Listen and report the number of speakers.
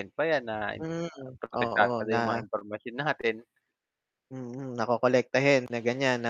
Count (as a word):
two